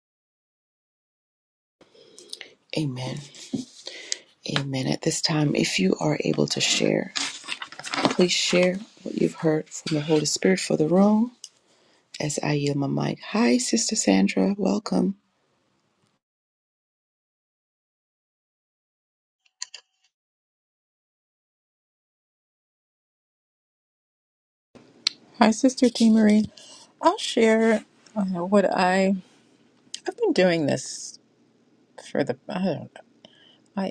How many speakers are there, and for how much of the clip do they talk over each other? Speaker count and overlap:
two, no overlap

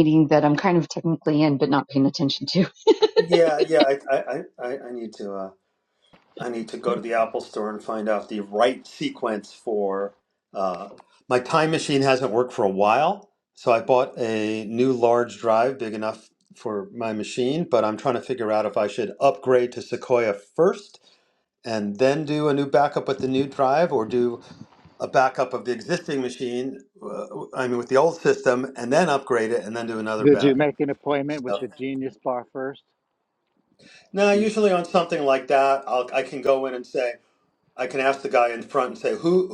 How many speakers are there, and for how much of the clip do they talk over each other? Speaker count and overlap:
three, about 2%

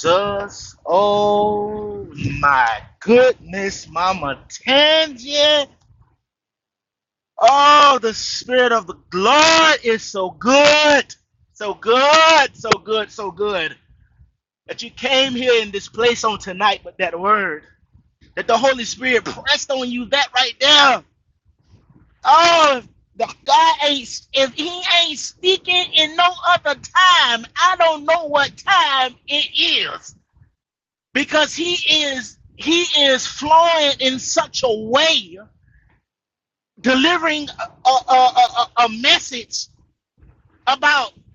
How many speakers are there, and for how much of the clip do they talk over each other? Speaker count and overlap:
one, no overlap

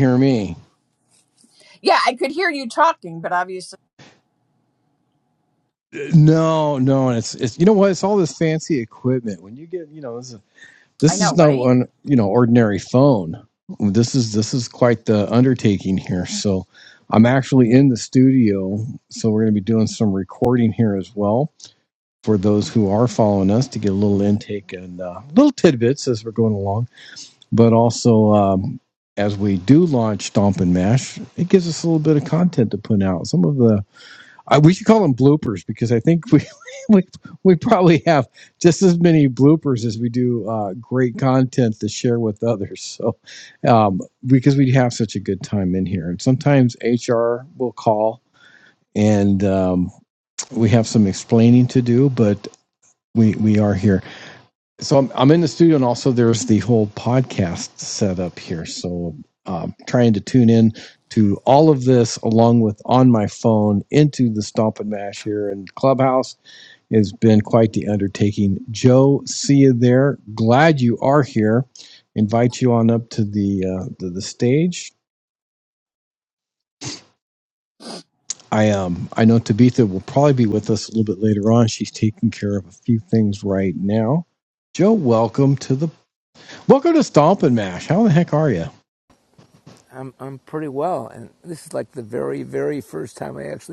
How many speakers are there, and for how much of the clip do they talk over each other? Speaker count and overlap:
three, about 1%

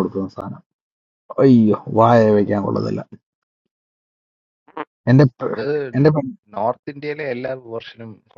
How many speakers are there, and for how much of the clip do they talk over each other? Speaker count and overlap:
two, about 2%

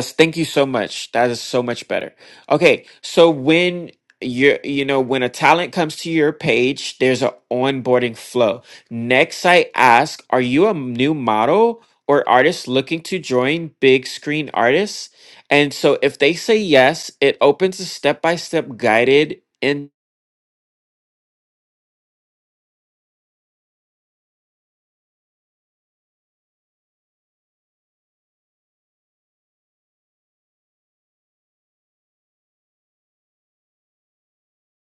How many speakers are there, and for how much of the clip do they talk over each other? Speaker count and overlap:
one, no overlap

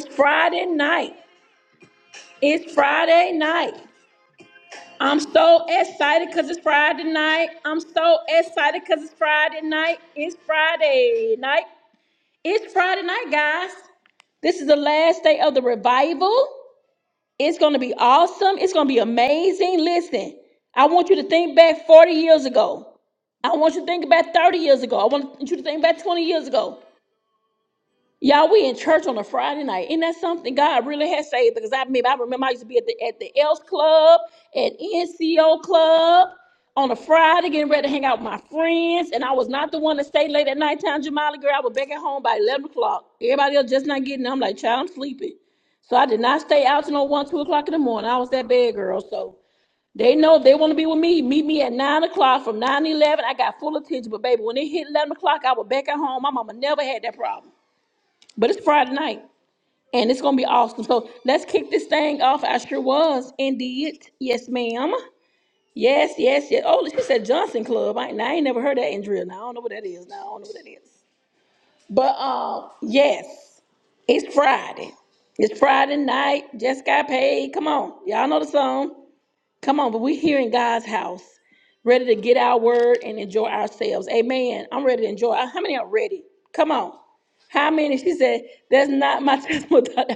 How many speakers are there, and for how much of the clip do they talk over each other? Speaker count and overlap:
one, no overlap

